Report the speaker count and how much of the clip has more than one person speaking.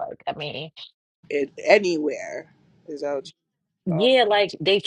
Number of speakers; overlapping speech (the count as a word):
two, about 8%